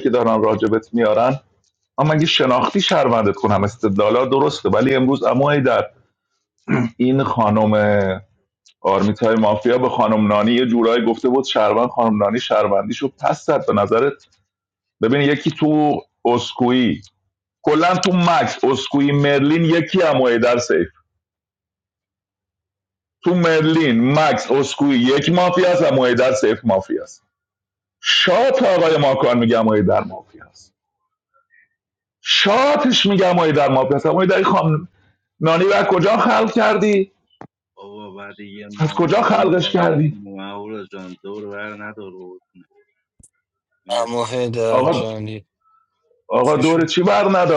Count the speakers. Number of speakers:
three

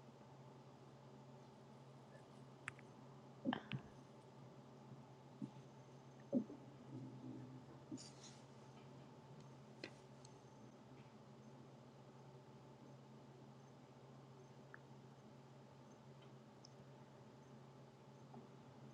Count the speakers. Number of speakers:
zero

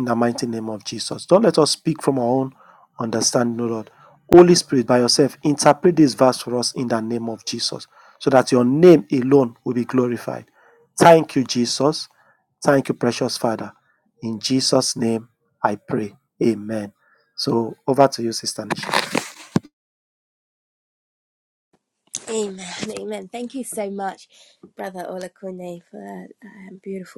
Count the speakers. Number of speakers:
two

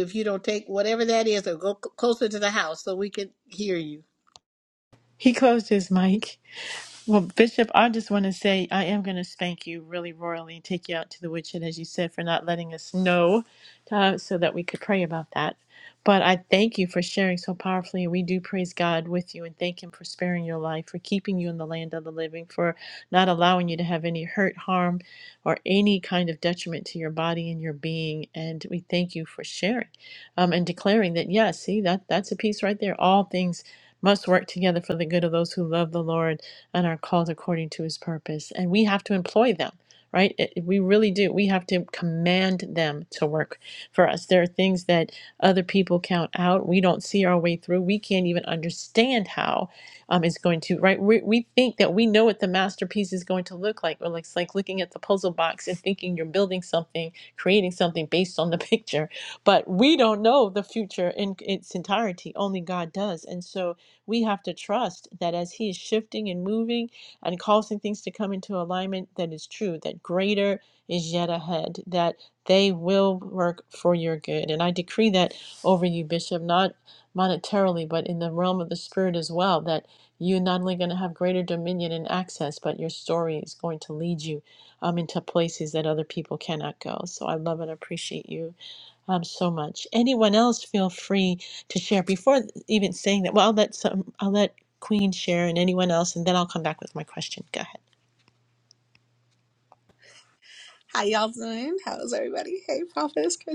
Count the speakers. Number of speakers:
three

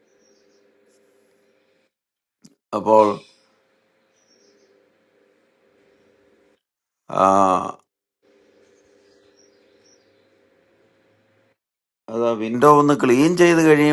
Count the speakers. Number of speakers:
one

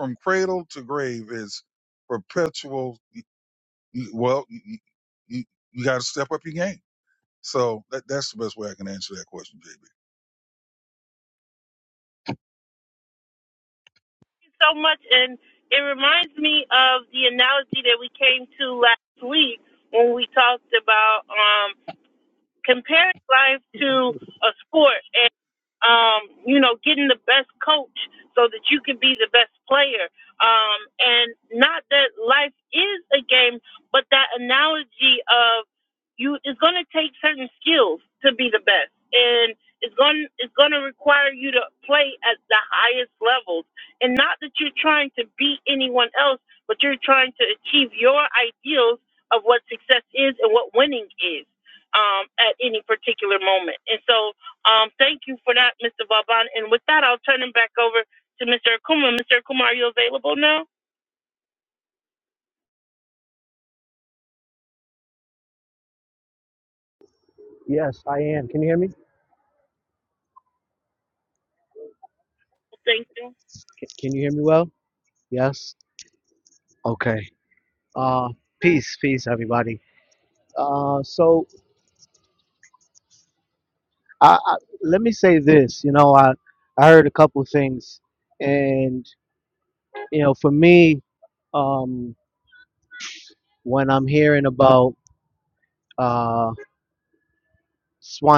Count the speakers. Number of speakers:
three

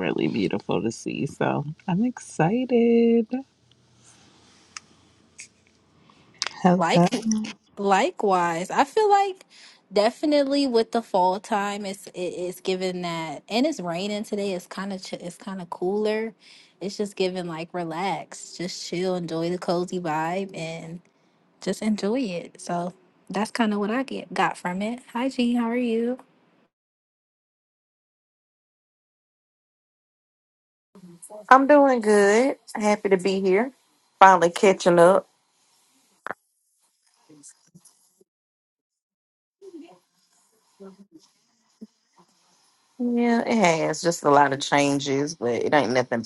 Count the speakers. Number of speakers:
three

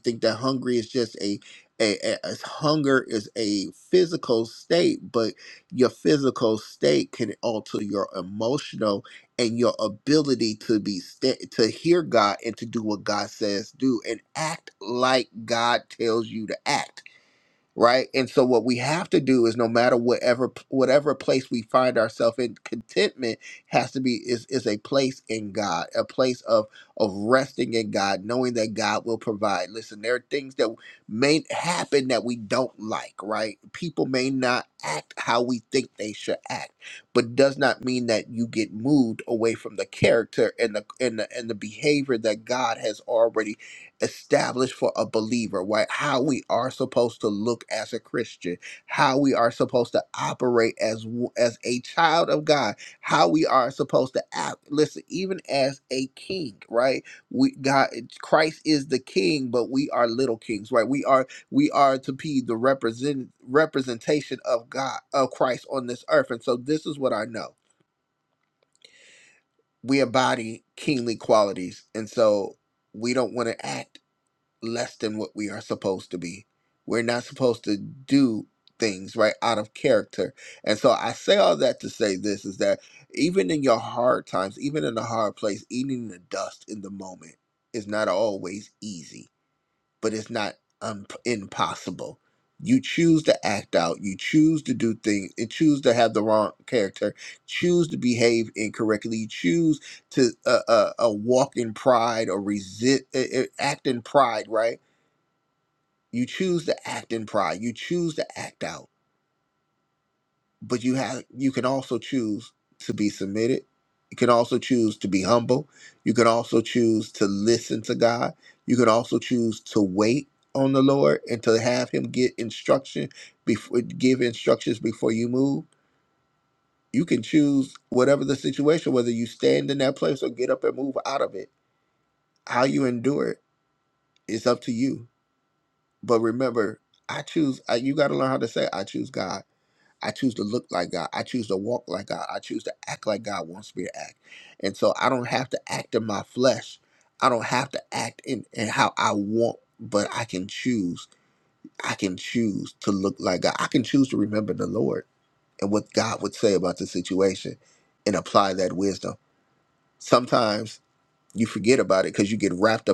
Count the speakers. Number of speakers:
one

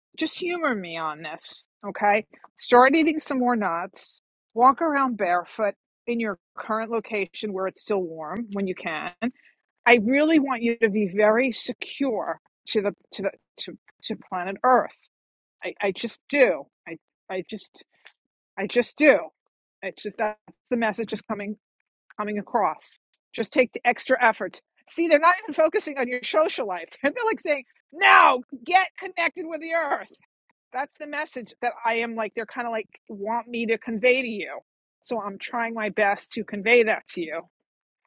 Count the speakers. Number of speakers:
one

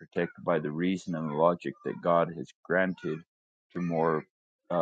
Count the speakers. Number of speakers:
one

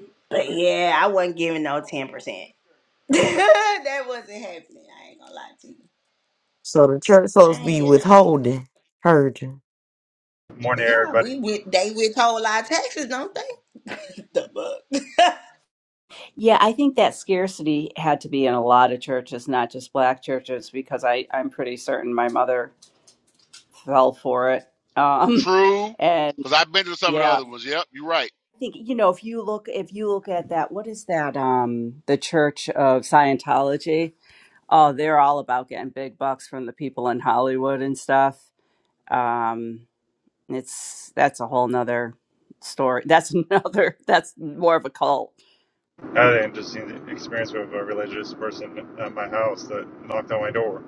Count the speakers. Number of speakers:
five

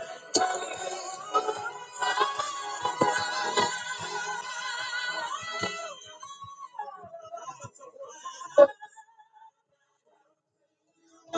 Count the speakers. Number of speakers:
zero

